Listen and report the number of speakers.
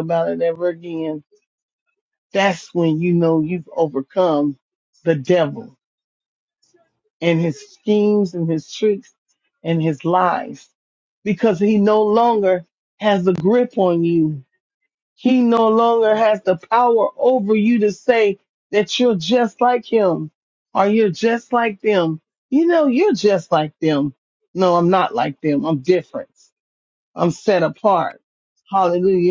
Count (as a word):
one